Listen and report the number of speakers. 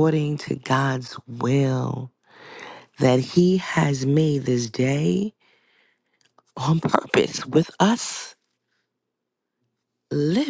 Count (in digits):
1